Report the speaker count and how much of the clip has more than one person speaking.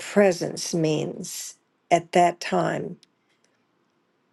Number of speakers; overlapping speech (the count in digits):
1, no overlap